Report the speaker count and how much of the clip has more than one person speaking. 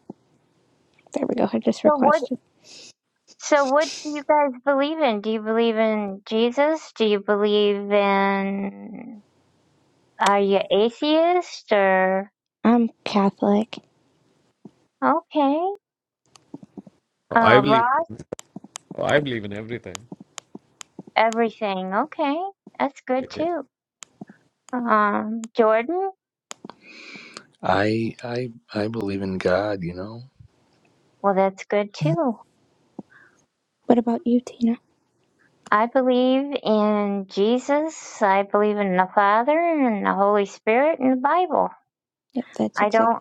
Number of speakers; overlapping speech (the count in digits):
4, about 4%